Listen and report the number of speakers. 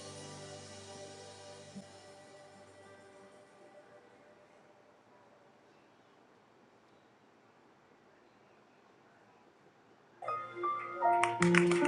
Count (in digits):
0